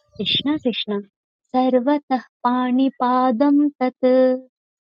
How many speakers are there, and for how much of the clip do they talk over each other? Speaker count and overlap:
one, no overlap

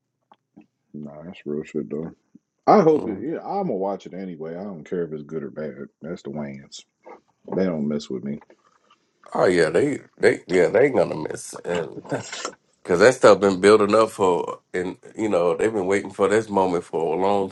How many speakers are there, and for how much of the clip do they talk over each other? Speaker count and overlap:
two, about 2%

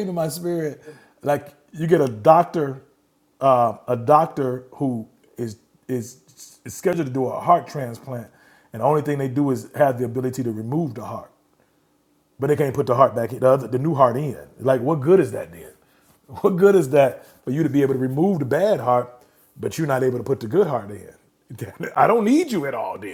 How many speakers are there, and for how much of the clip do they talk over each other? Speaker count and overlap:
one, no overlap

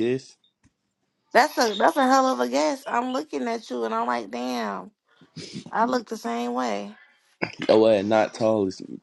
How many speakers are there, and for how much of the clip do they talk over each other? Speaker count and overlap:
two, no overlap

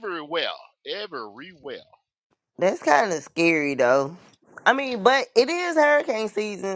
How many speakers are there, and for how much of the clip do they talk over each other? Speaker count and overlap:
two, no overlap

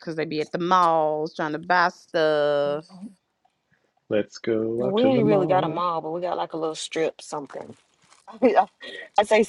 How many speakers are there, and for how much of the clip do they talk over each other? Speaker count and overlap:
three, about 11%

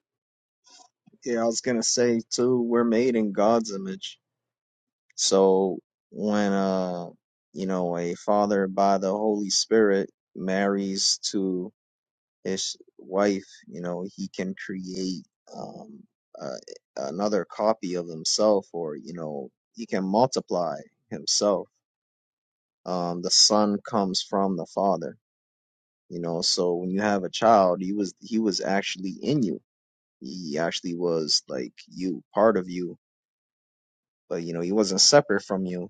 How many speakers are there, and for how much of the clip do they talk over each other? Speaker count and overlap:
one, no overlap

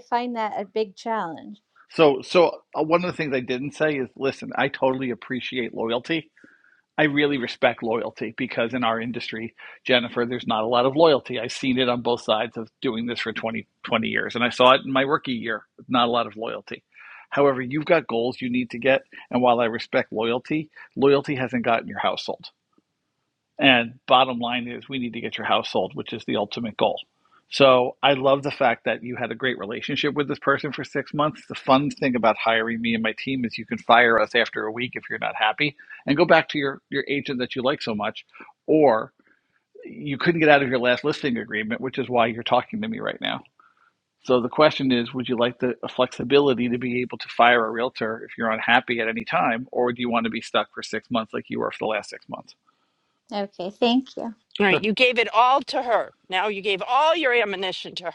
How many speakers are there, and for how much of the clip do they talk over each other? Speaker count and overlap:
three, under 1%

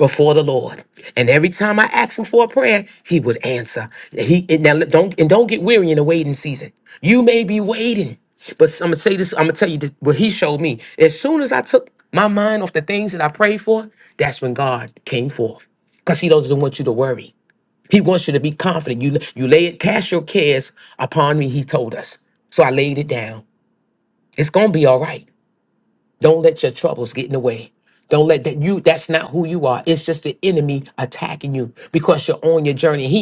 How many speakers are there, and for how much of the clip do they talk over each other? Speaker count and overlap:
one, no overlap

